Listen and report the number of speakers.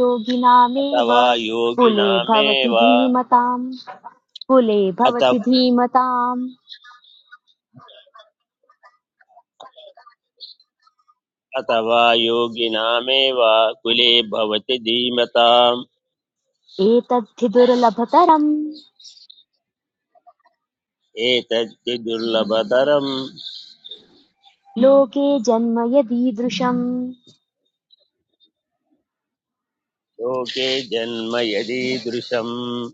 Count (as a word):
two